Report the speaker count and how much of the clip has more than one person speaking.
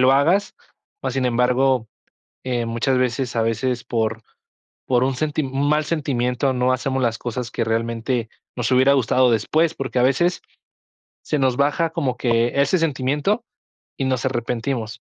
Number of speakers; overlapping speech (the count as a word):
one, no overlap